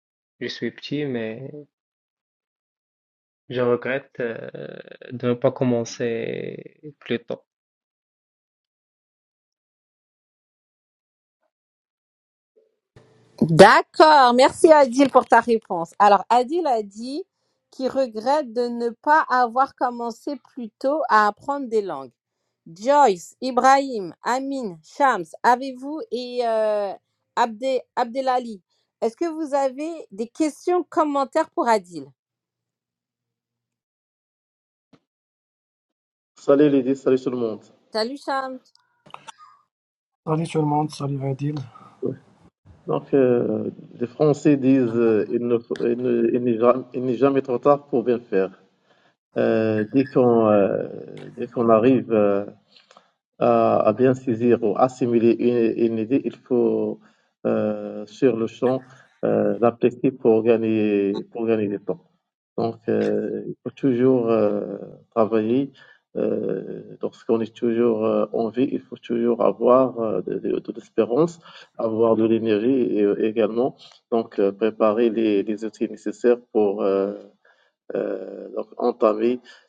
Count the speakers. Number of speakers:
4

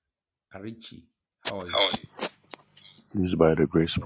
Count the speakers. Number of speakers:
2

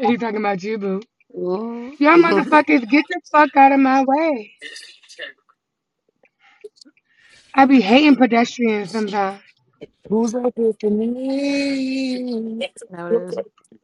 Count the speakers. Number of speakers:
3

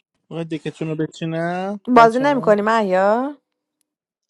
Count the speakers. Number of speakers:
2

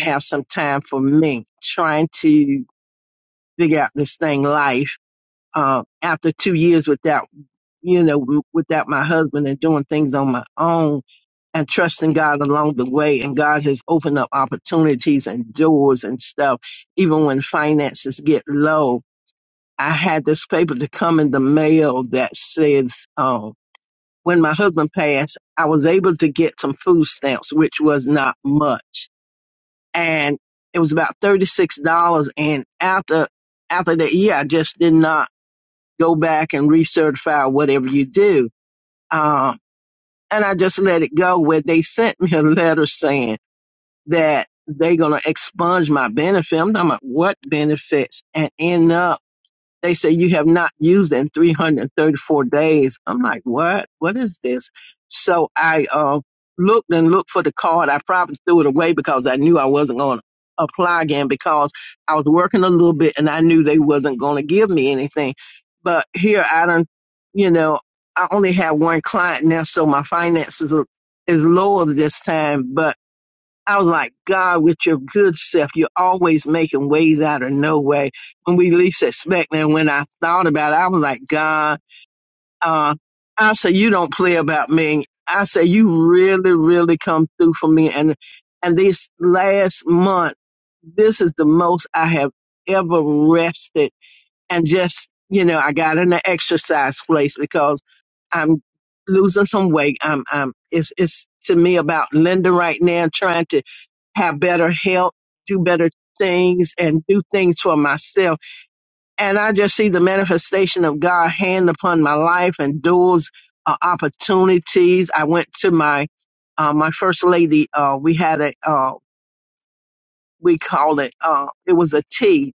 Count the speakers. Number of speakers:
1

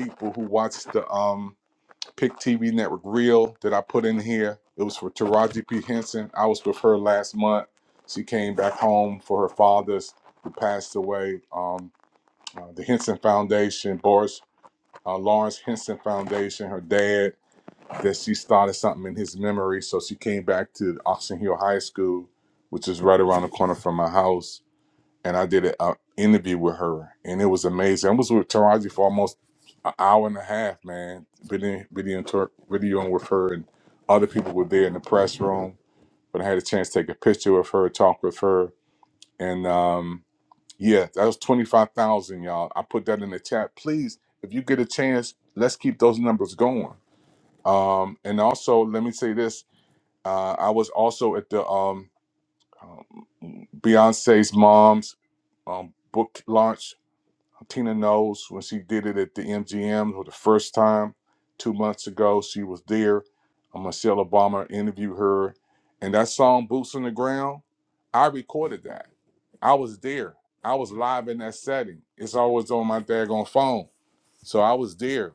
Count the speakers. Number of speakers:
1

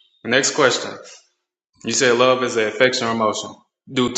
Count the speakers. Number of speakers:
1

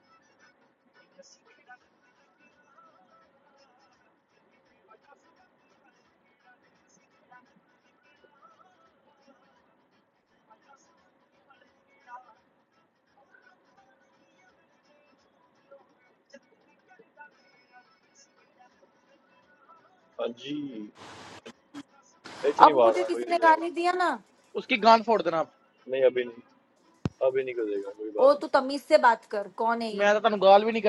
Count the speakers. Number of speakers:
3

